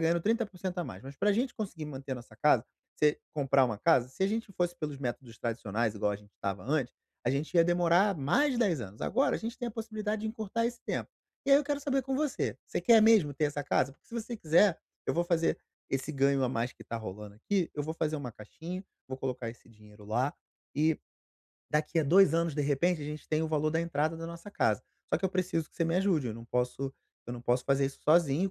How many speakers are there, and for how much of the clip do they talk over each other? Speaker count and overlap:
1, no overlap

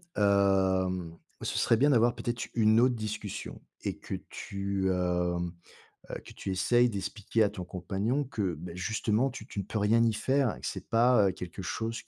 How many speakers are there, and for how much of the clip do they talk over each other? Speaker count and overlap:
1, no overlap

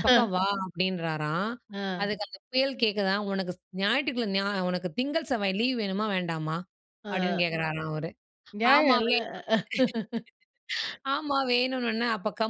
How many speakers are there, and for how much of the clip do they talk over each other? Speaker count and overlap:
2, about 7%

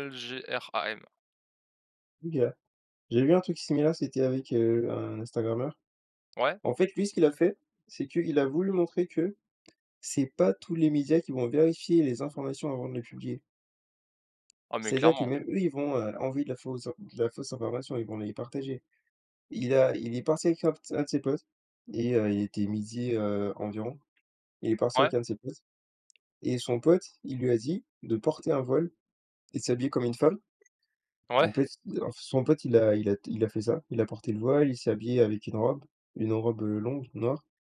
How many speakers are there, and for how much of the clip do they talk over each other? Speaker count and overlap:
2, about 2%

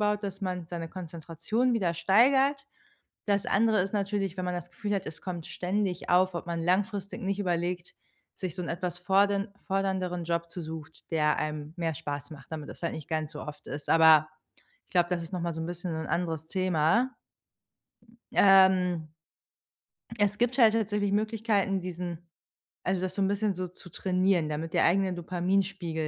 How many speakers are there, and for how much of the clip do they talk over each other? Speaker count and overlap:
1, no overlap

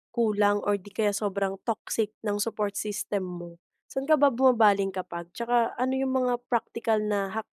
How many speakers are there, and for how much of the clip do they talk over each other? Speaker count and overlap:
1, no overlap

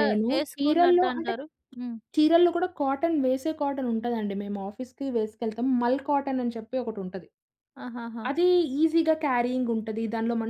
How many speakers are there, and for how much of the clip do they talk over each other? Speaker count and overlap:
2, about 14%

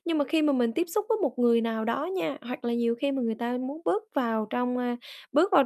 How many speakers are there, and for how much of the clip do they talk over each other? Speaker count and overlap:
1, no overlap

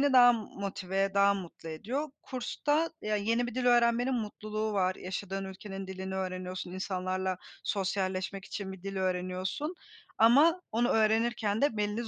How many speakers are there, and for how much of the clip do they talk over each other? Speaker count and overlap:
1, no overlap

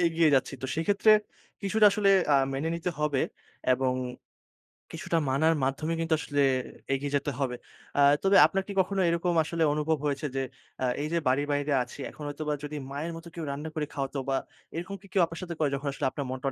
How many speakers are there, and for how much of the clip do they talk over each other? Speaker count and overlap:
1, no overlap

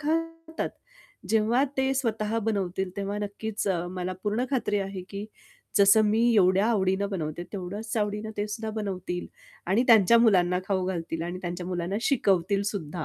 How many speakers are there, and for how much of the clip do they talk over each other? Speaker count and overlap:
1, no overlap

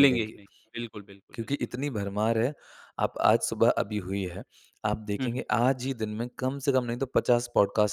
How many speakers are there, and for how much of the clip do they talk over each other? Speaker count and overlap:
2, about 9%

